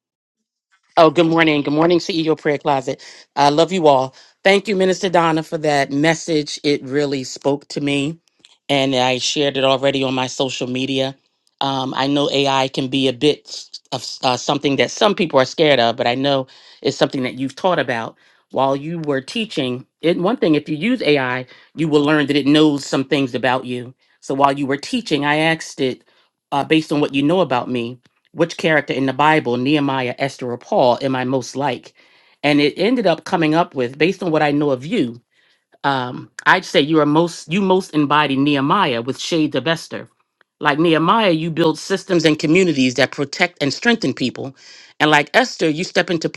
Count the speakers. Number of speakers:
1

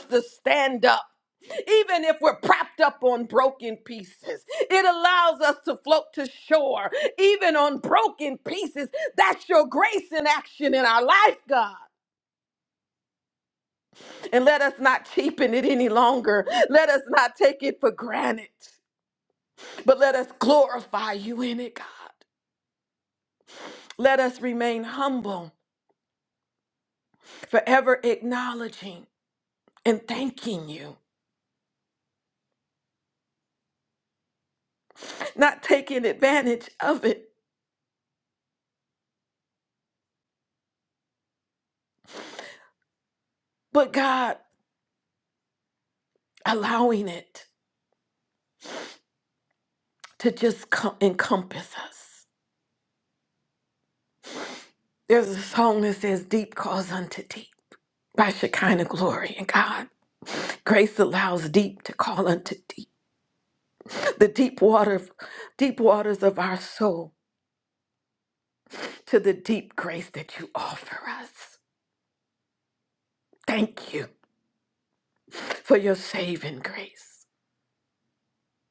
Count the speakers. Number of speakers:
1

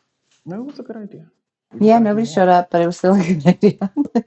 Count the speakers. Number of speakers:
2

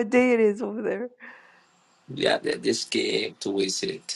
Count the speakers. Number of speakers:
2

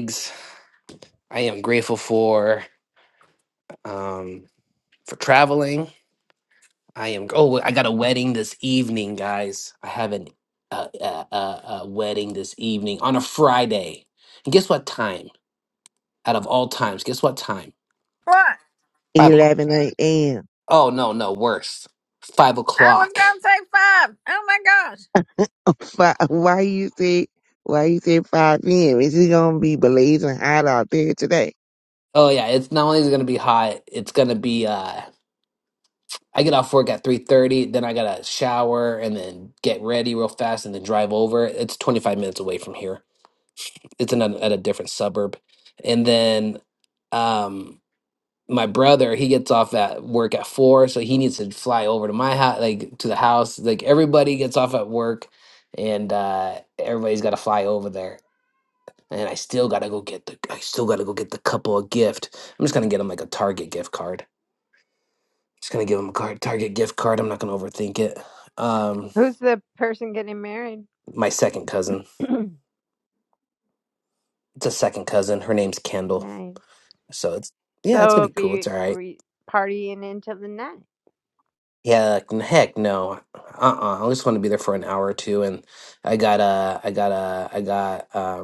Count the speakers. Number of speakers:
4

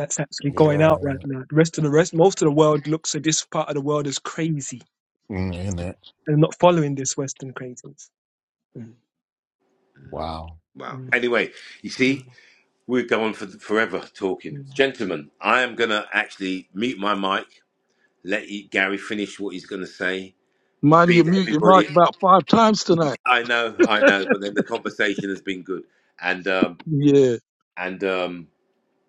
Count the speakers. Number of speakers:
4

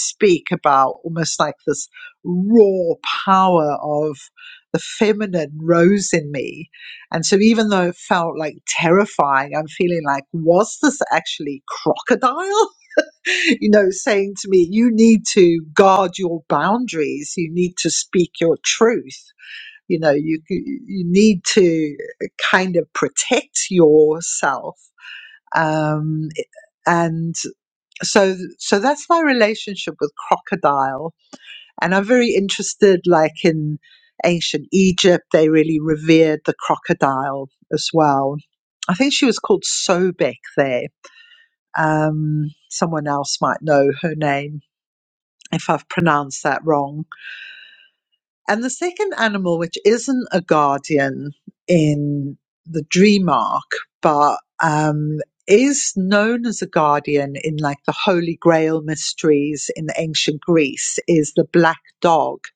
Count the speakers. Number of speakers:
1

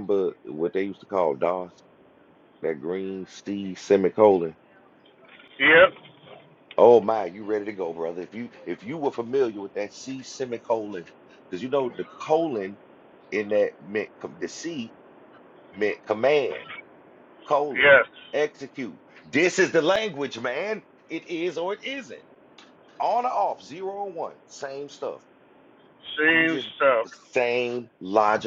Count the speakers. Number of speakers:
2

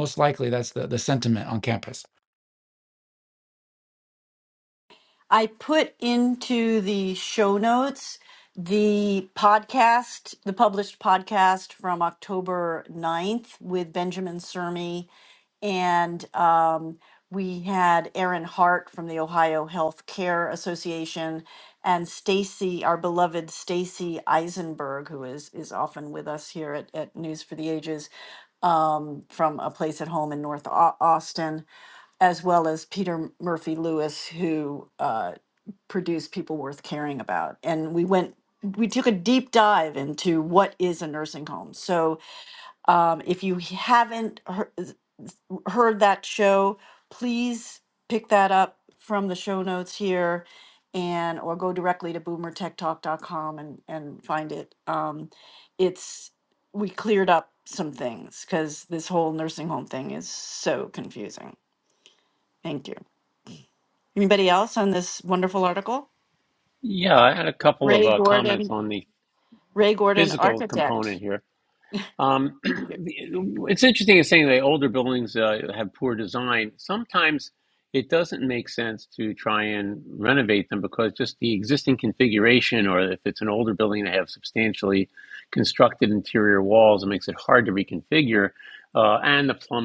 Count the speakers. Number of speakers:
3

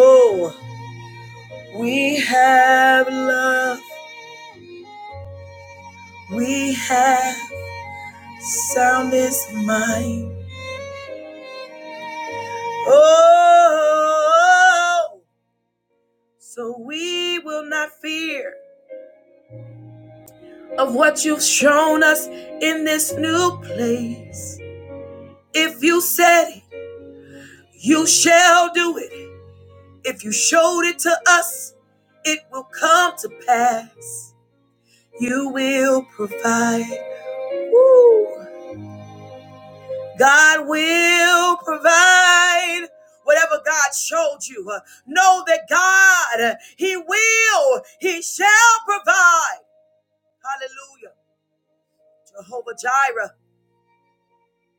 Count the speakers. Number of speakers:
1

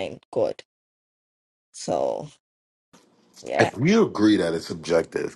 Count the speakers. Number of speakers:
2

